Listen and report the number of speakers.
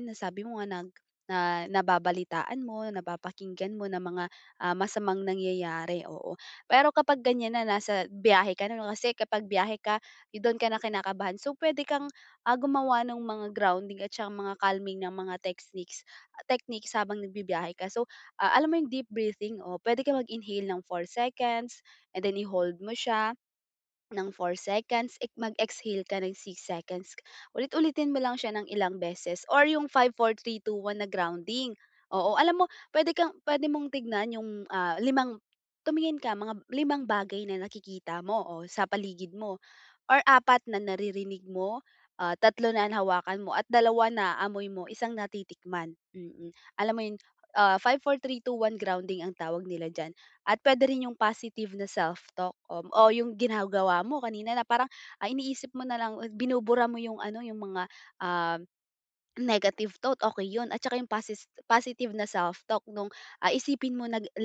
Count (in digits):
1